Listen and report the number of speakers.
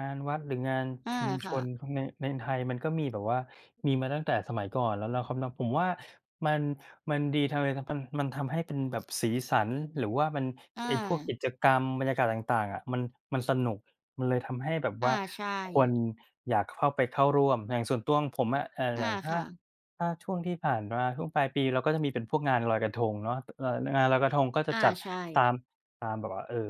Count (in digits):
2